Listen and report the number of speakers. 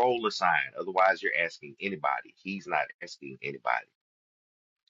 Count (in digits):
1